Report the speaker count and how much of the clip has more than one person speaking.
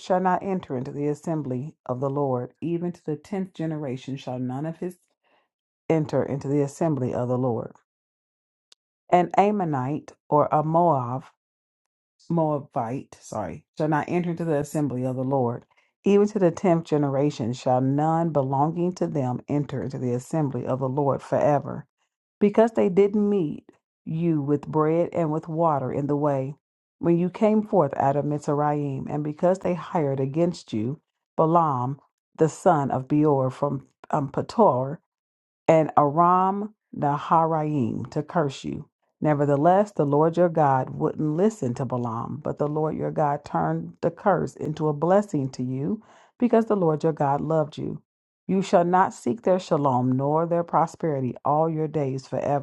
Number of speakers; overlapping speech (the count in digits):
1, no overlap